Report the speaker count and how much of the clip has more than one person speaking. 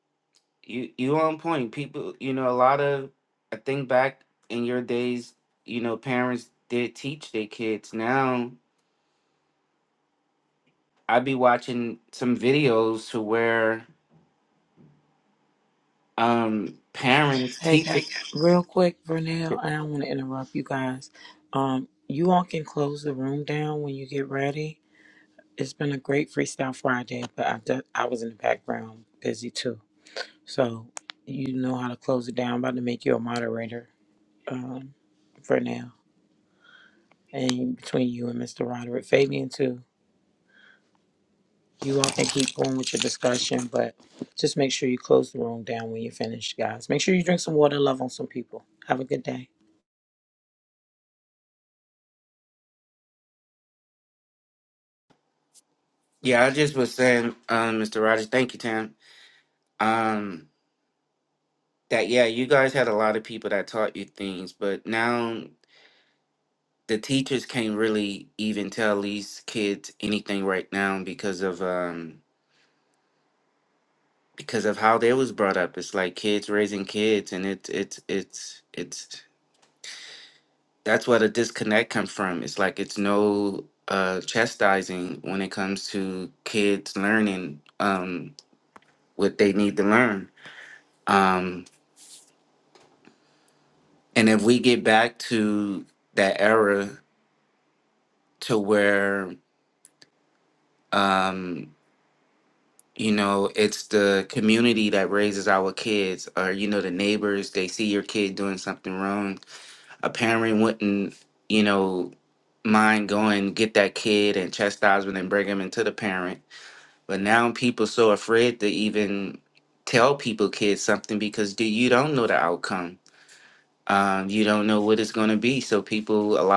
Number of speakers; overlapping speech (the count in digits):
2, under 1%